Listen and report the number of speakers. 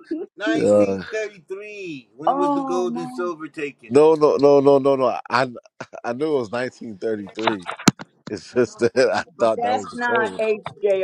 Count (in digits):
3